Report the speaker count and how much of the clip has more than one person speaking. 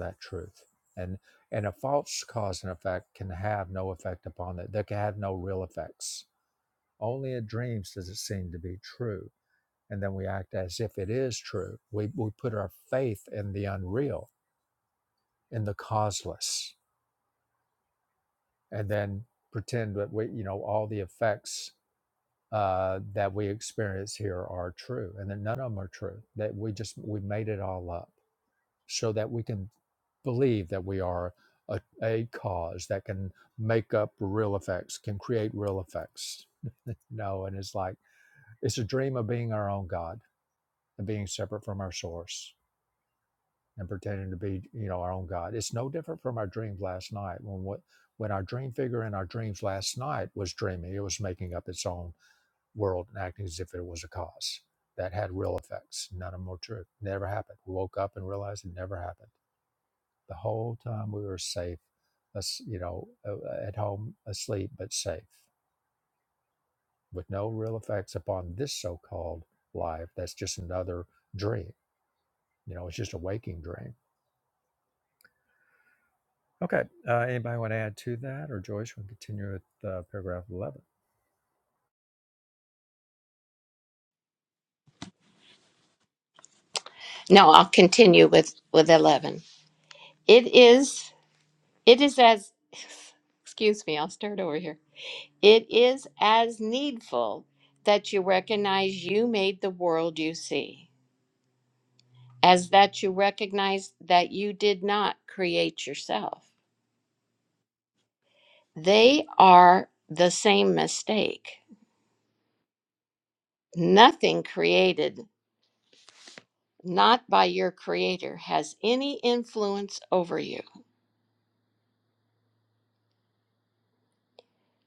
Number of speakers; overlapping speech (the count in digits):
2, no overlap